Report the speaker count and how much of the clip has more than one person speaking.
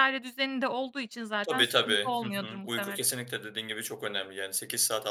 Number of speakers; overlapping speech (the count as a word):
two, about 31%